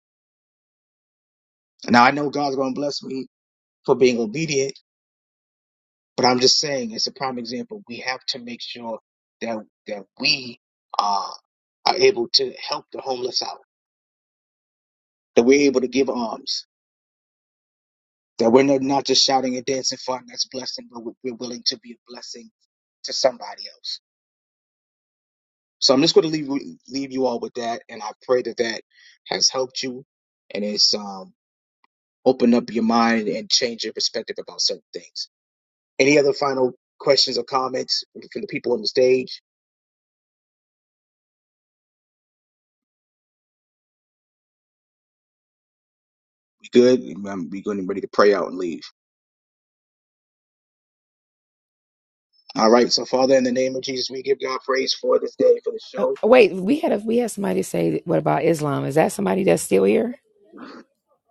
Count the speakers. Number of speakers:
two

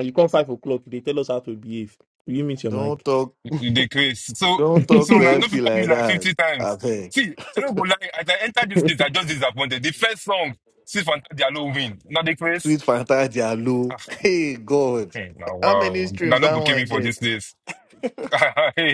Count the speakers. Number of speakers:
three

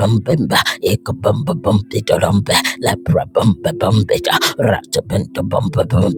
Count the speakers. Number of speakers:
one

